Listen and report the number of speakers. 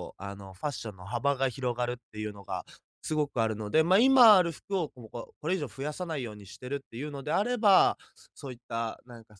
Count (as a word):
one